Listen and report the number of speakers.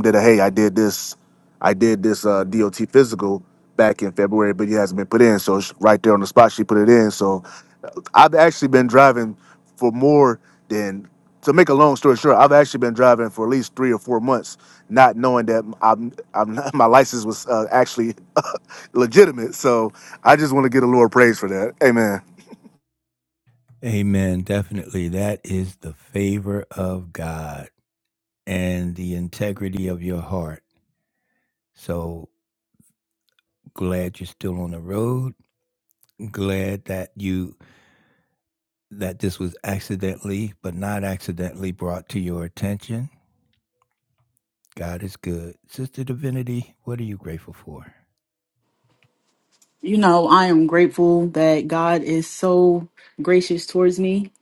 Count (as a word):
three